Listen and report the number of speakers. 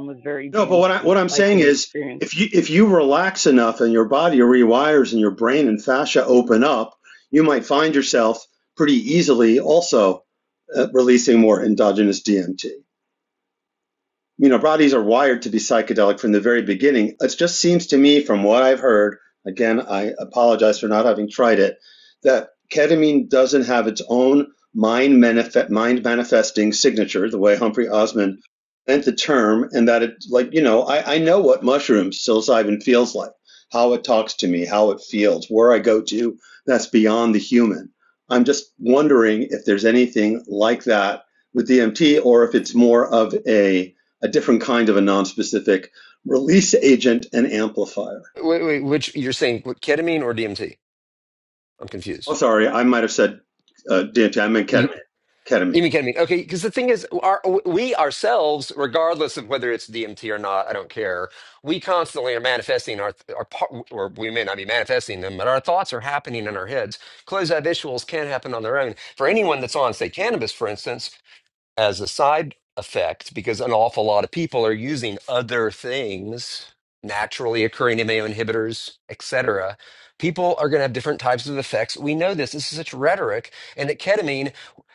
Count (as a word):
three